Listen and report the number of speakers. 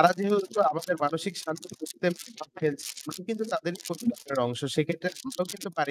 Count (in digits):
1